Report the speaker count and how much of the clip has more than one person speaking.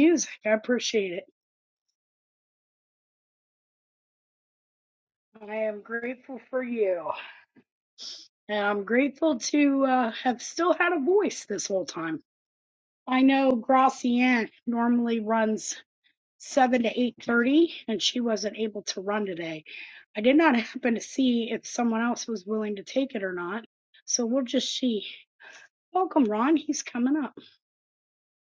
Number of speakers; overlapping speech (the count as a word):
one, no overlap